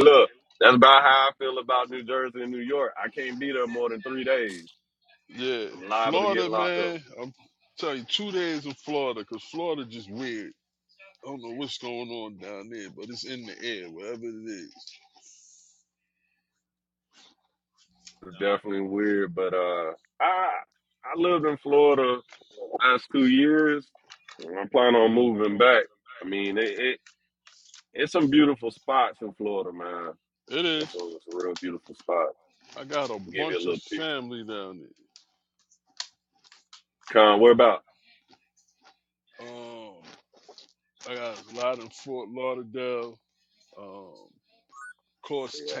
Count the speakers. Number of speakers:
2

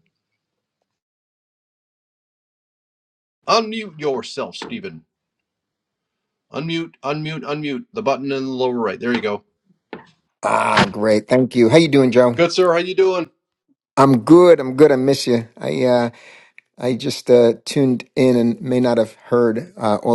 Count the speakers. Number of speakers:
2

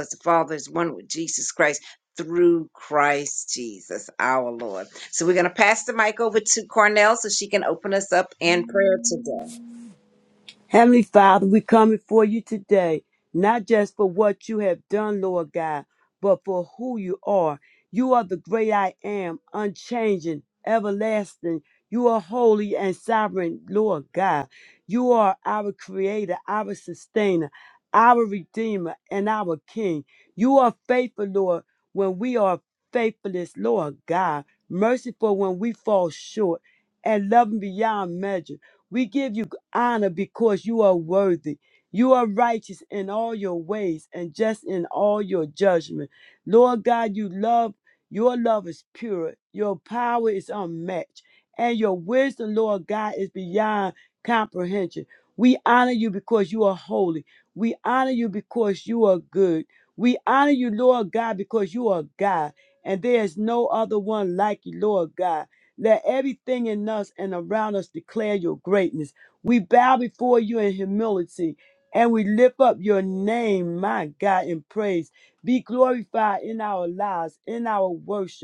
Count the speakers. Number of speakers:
2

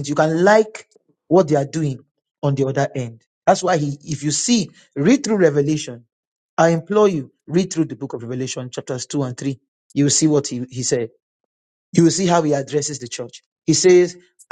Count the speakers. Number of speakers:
1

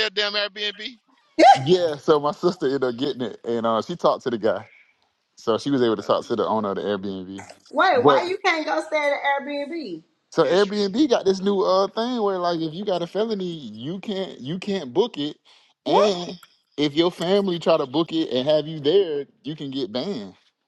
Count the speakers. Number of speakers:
3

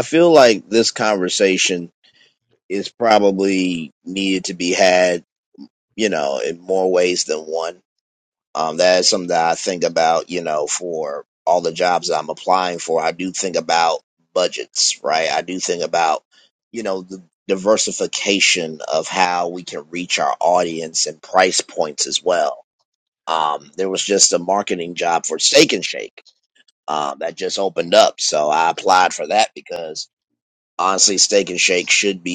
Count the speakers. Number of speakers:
1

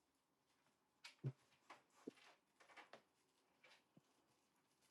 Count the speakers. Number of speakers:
0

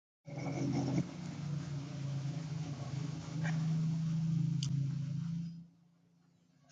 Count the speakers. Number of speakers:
0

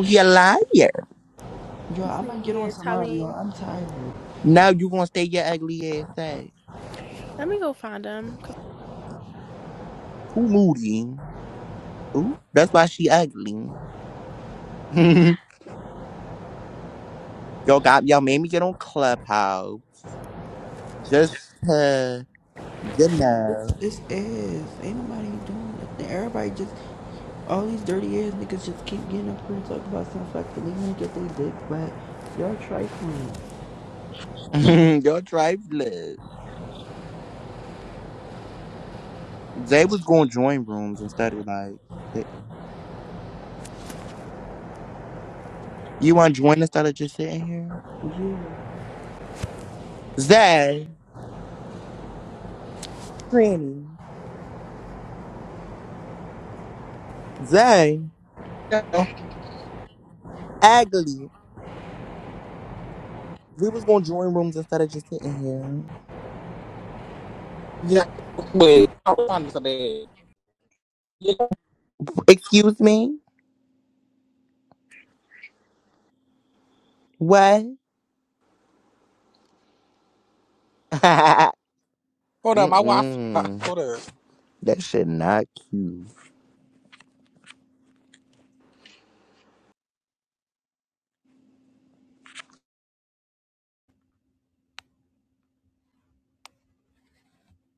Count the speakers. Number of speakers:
4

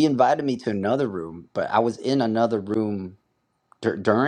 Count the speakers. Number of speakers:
1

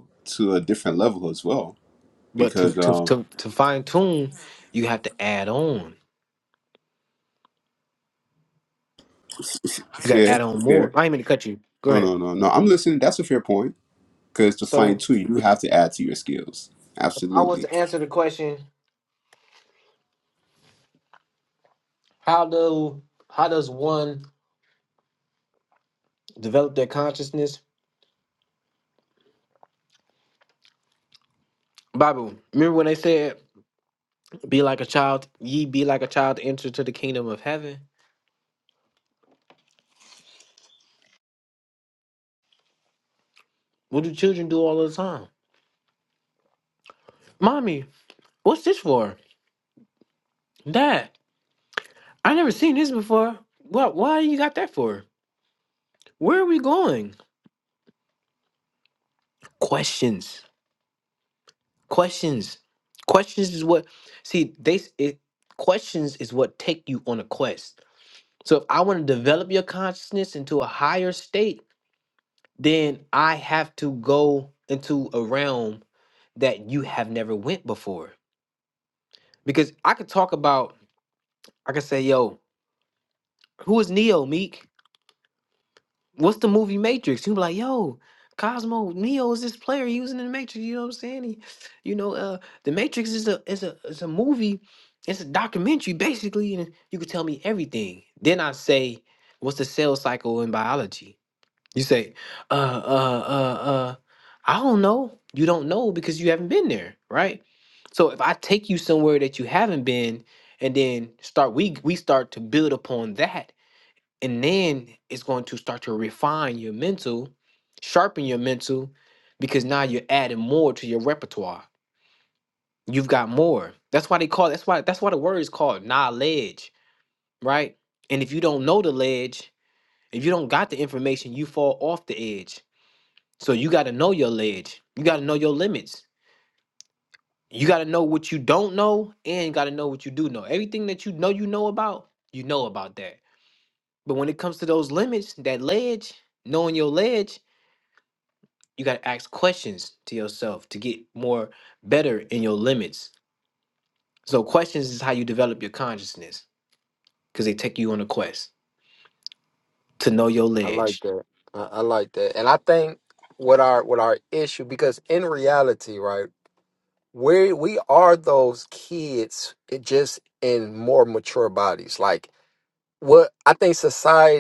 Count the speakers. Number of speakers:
3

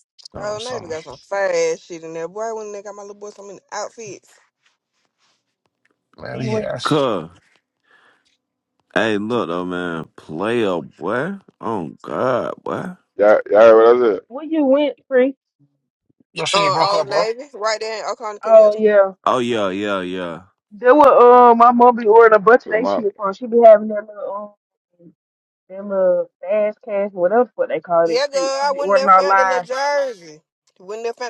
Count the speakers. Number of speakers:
5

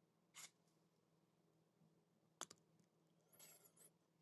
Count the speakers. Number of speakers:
0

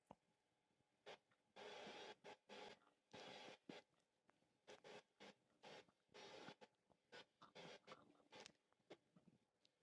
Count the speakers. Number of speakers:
0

